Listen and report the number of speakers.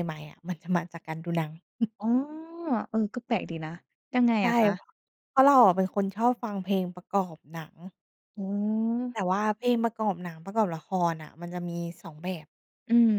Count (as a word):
two